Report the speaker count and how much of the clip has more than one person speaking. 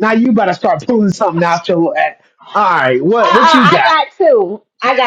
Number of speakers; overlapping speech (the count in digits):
2, about 15%